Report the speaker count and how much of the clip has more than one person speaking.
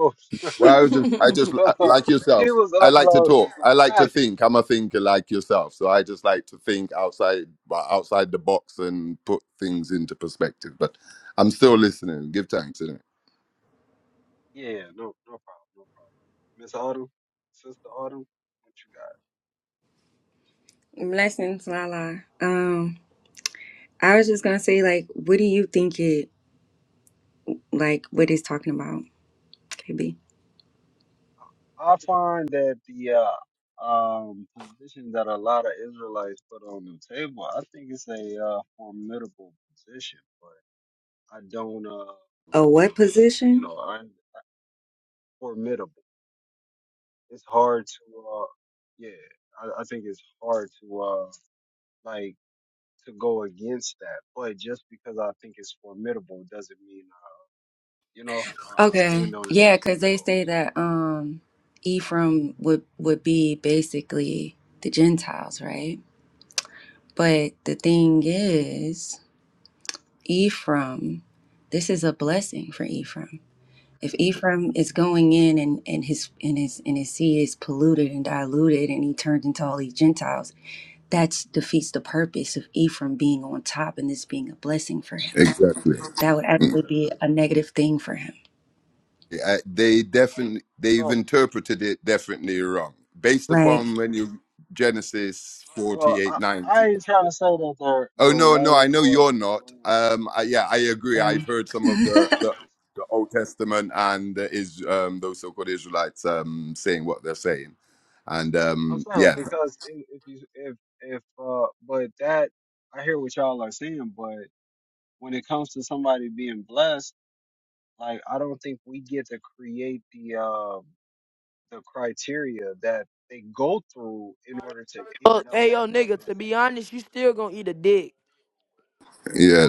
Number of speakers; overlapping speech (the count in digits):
4, about 6%